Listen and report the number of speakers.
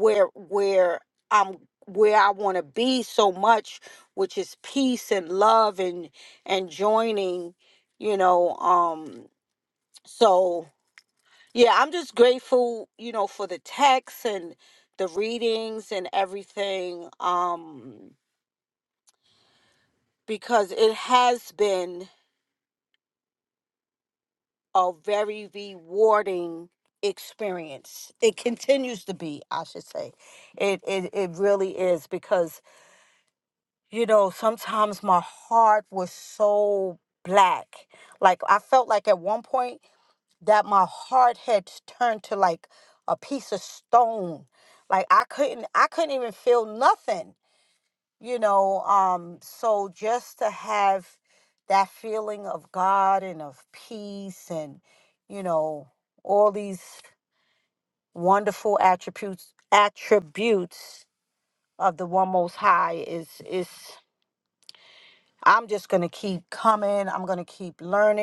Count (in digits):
1